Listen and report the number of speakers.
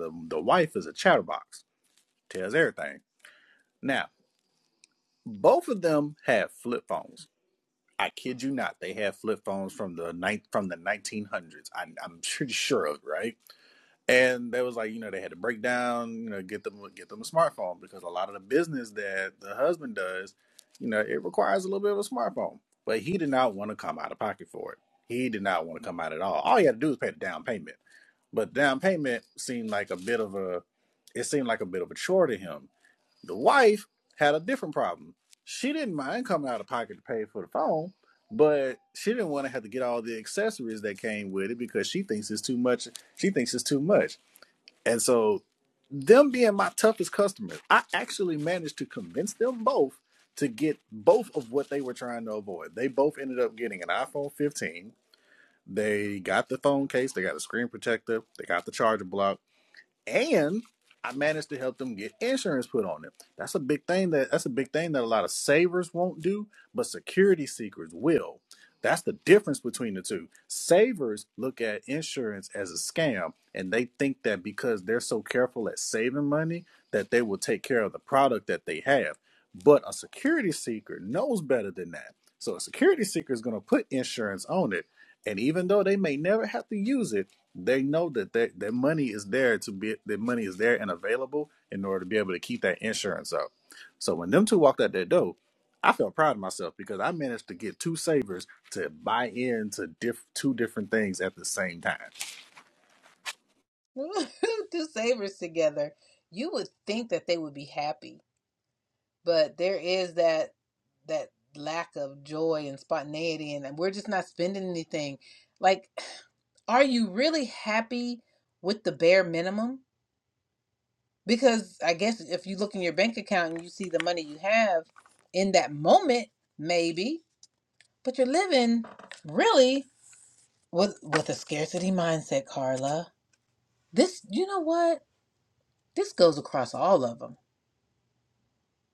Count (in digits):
2